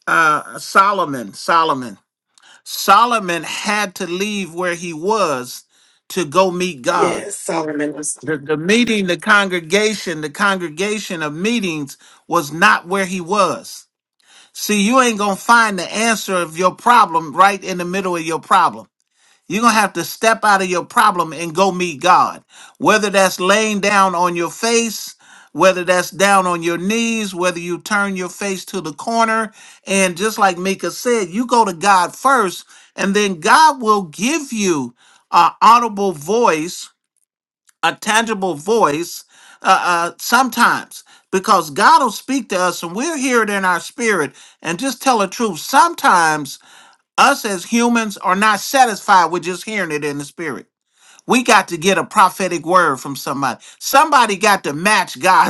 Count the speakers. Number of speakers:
2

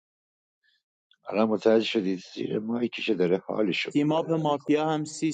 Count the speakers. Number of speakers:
2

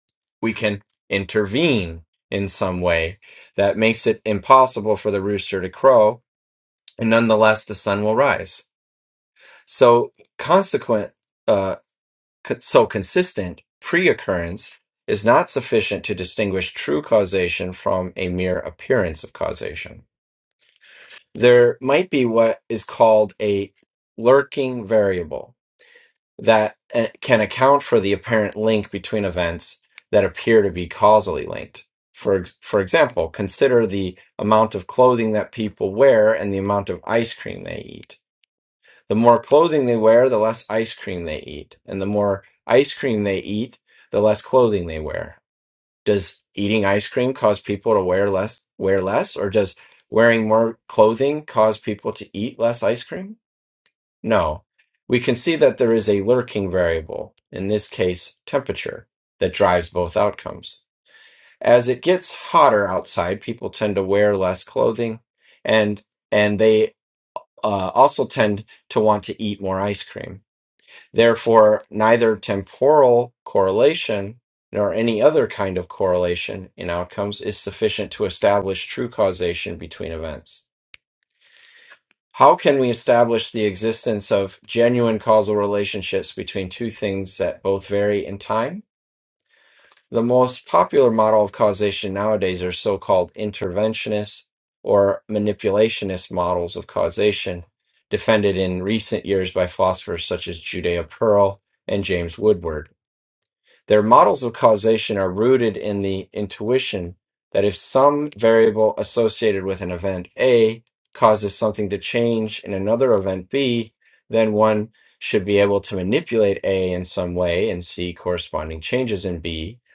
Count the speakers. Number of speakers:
1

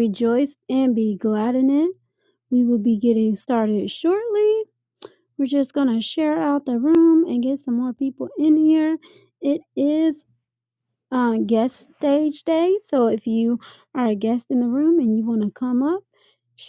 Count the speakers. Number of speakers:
1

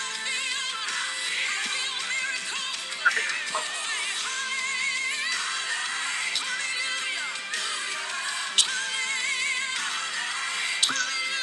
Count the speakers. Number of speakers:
0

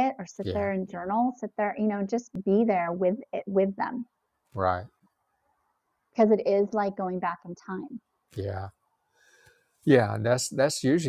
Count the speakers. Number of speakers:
2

